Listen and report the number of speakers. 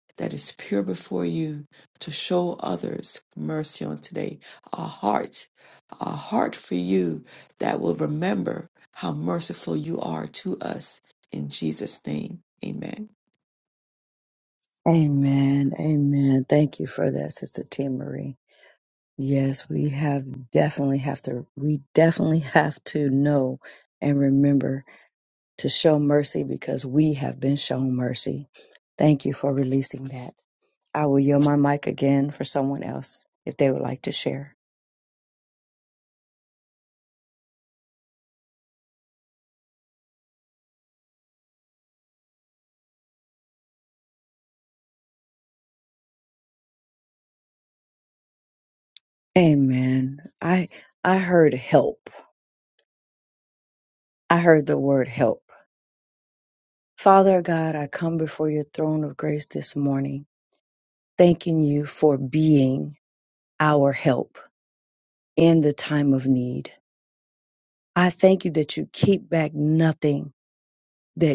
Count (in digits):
2